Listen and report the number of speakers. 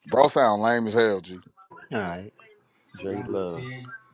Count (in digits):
2